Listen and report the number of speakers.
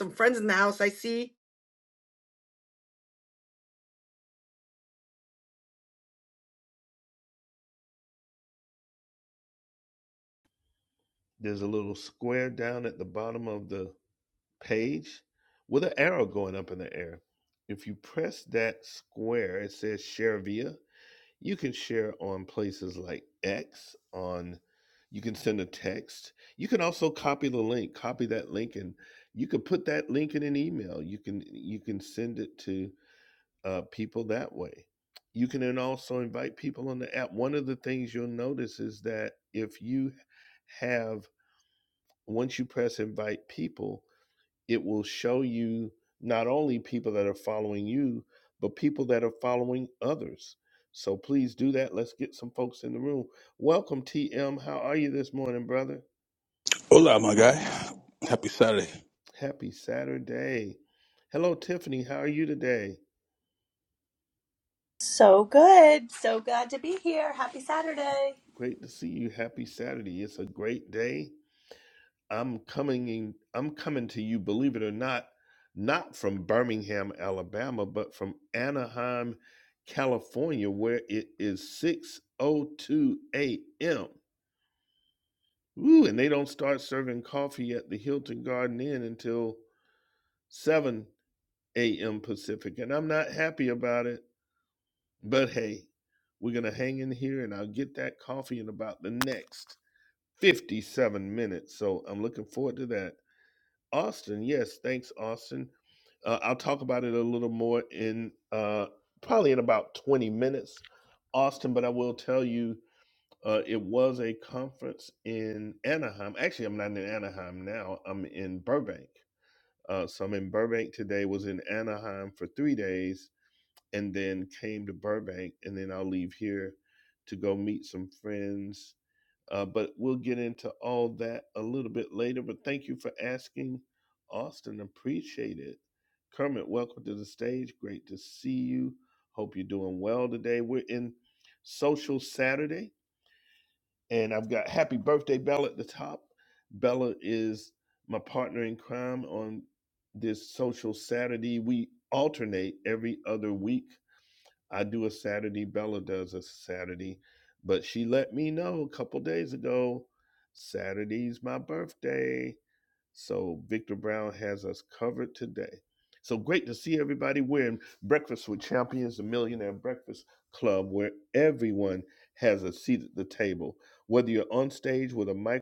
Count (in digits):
4